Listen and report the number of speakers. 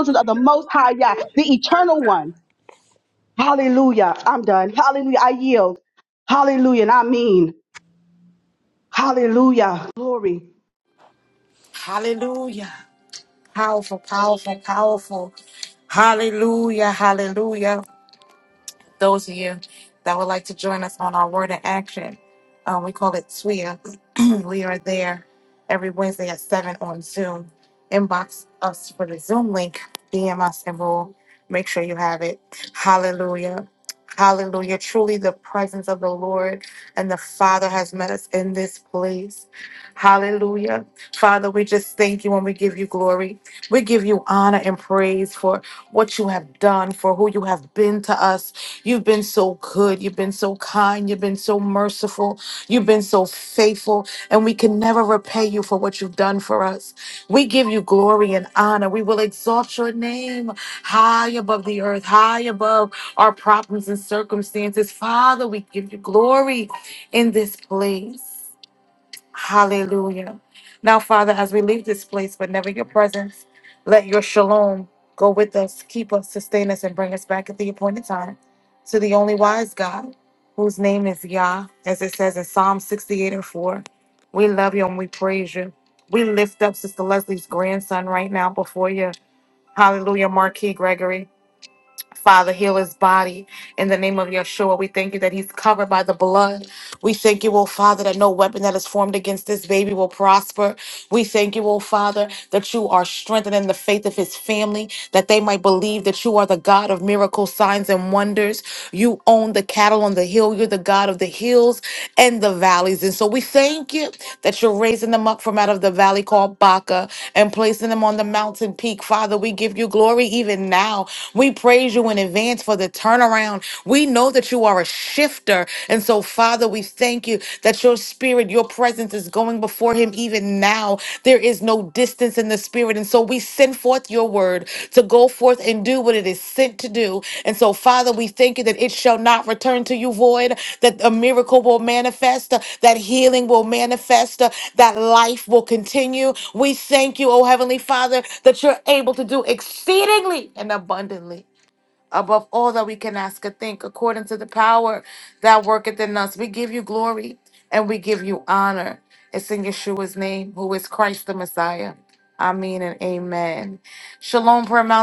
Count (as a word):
two